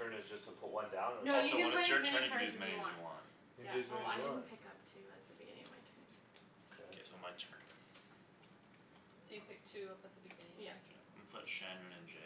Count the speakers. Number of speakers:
4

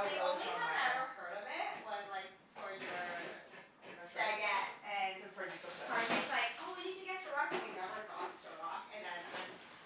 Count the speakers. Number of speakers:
2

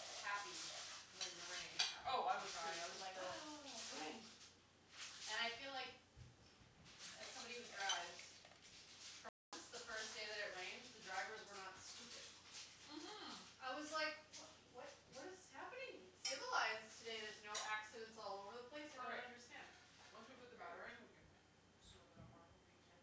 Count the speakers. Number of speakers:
2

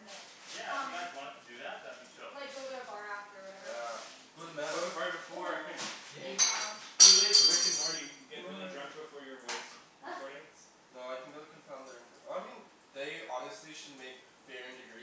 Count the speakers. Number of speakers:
4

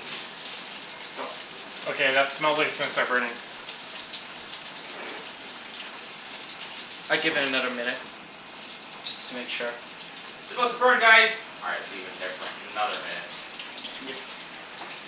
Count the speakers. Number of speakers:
3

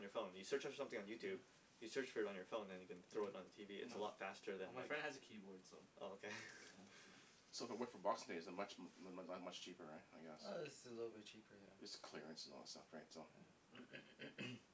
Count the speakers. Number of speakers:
4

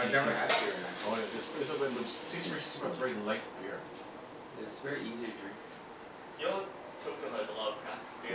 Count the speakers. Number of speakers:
3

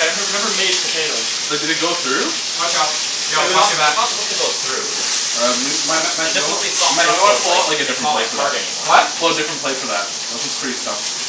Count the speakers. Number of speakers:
4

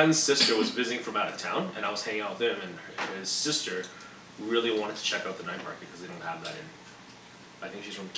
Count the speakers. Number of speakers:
1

